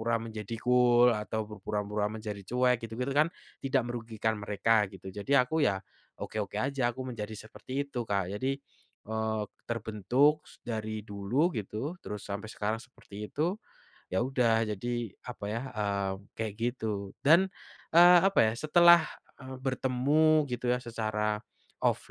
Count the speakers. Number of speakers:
1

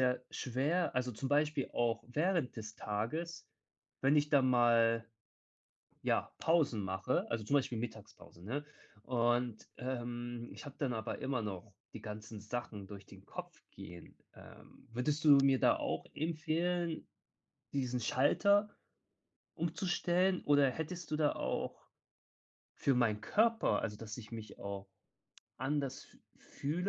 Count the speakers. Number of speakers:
1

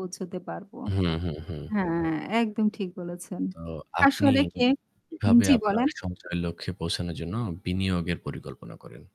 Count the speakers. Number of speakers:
2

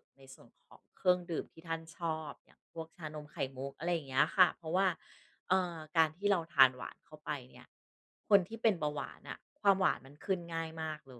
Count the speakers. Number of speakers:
1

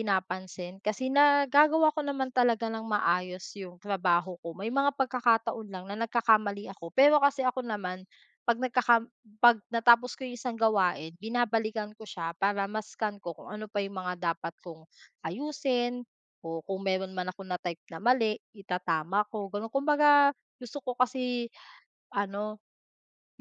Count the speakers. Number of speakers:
1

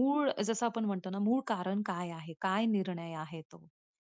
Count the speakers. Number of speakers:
1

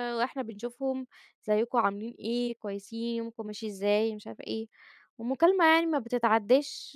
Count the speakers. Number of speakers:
1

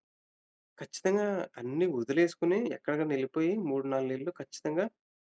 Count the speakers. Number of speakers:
1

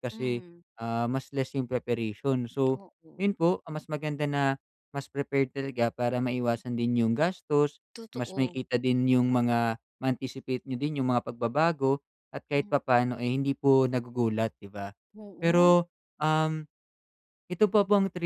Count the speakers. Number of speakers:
2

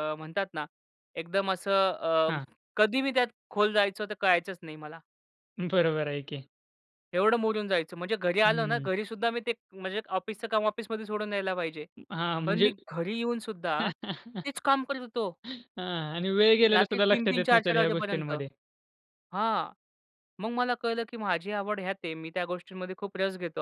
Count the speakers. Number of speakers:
2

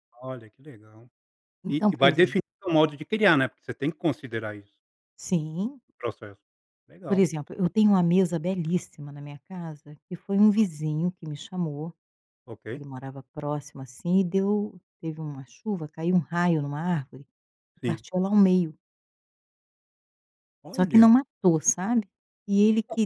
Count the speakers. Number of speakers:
2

